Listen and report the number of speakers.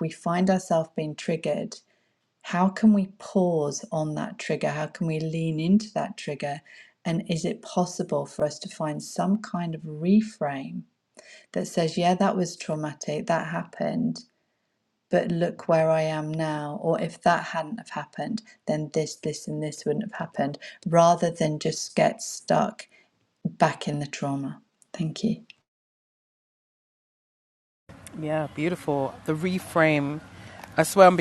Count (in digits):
2